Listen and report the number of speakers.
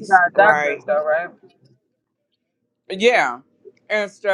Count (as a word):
two